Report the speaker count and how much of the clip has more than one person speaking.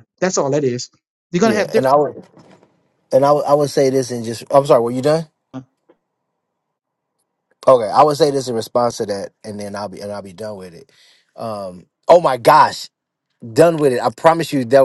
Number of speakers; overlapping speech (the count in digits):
2, about 4%